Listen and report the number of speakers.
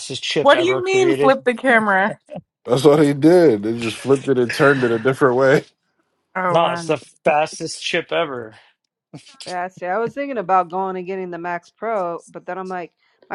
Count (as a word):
four